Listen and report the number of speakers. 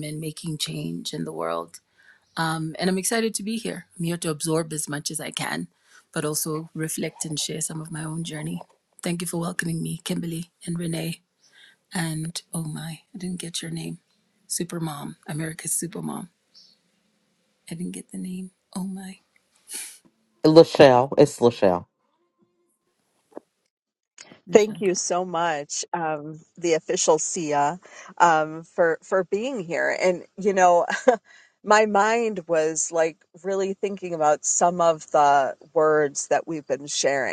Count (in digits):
3